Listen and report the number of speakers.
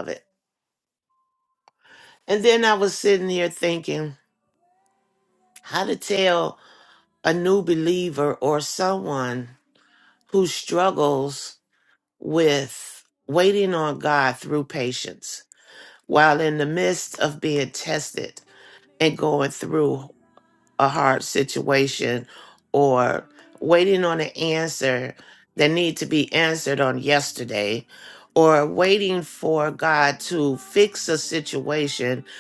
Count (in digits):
1